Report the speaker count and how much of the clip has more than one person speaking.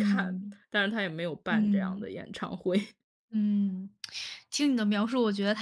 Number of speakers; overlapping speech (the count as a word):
two, about 16%